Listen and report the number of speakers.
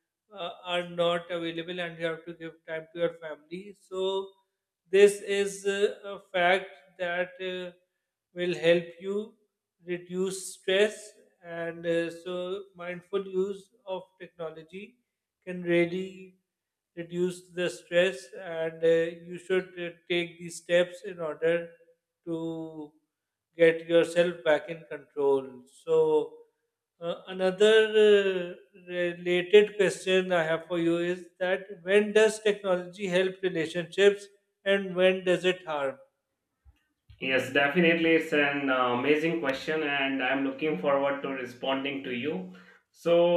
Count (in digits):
2